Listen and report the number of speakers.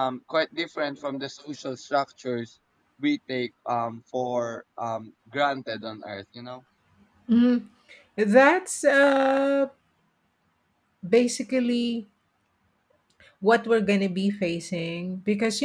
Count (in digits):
2